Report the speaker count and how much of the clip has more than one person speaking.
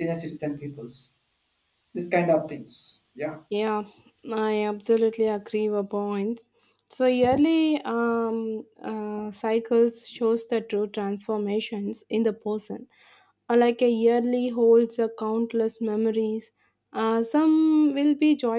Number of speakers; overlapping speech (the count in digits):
2, no overlap